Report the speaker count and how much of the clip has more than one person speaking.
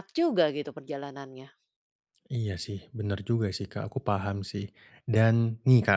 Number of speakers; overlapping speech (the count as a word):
two, no overlap